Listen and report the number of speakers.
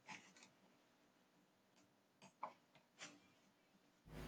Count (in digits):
0